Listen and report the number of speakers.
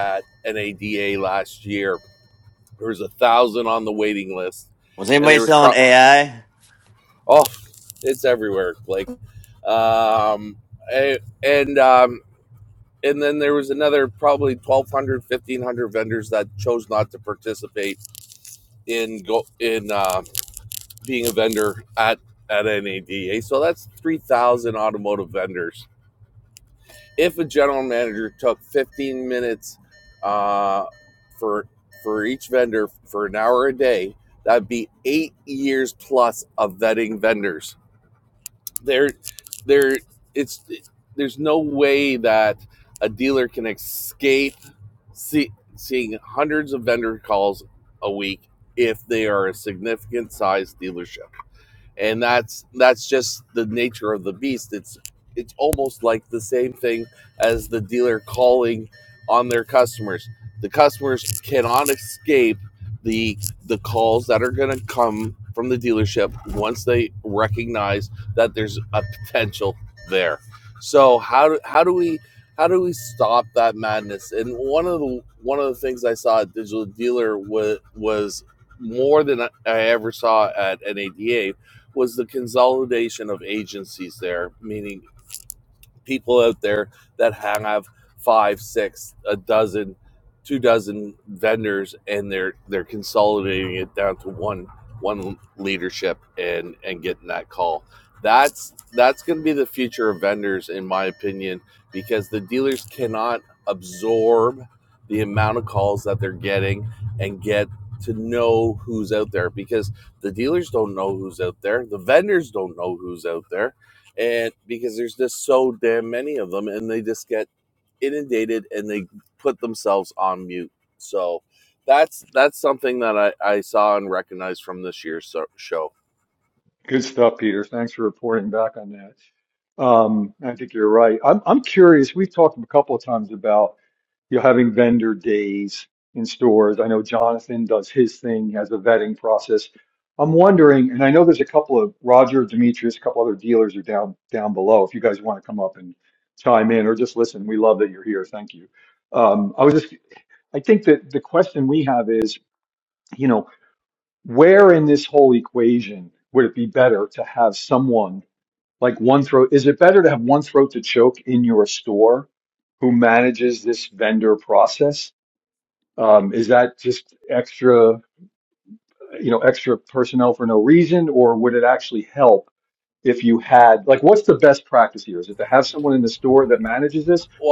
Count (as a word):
three